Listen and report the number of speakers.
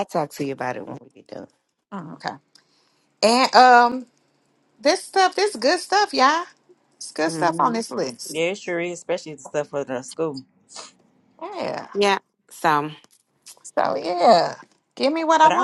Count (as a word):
four